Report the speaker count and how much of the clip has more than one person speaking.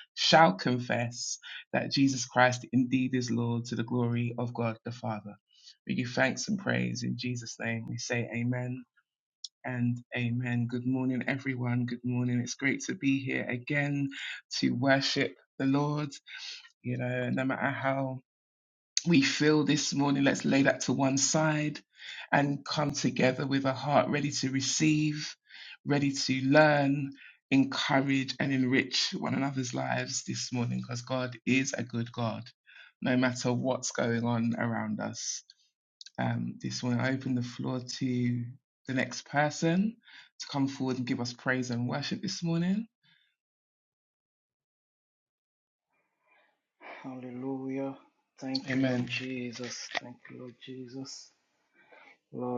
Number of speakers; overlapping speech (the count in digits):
2, about 1%